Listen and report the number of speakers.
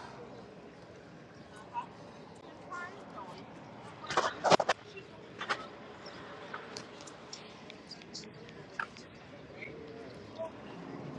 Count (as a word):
zero